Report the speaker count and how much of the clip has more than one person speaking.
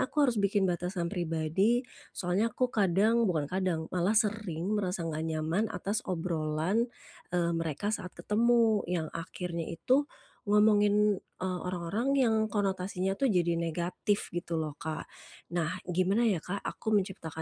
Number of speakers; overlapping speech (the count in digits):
1, no overlap